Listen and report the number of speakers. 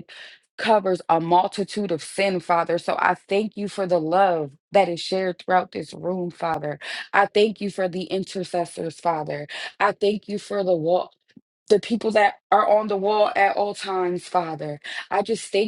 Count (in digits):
1